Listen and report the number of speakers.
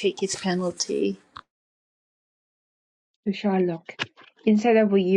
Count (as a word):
two